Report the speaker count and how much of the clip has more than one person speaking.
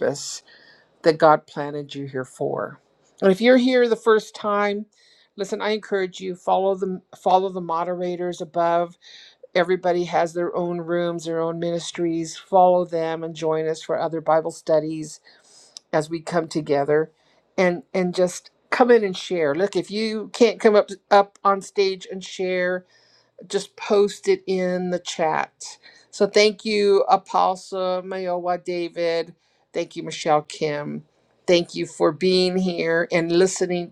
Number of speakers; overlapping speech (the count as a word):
one, no overlap